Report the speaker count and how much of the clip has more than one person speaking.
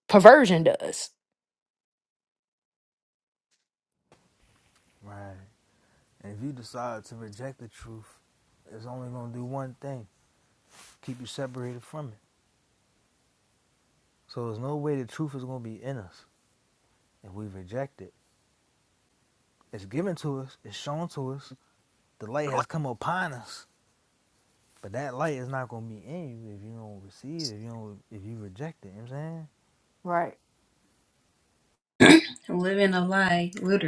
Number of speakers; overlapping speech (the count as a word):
three, no overlap